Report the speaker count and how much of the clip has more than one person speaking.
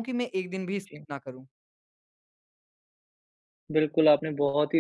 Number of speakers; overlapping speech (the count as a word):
two, about 1%